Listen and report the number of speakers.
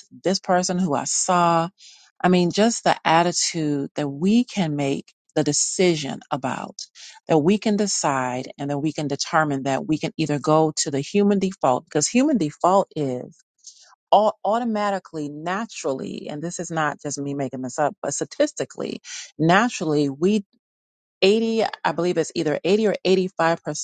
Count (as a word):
one